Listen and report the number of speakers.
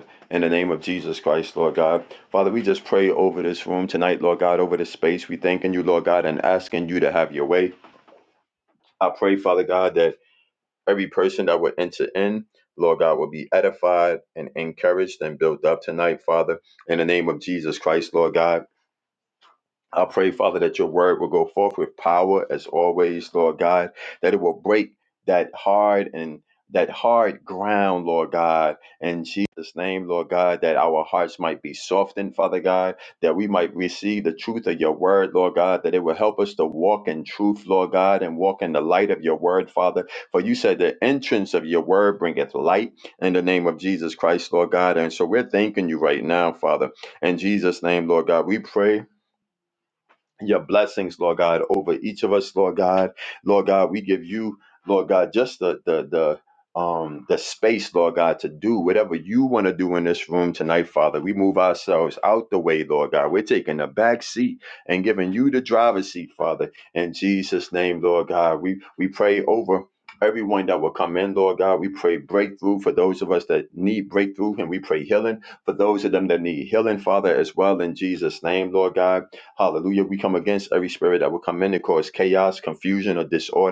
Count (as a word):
one